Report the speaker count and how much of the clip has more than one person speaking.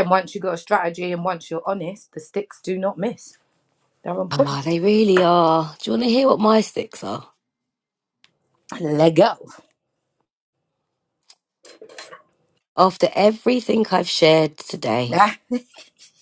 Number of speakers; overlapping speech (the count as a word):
two, about 2%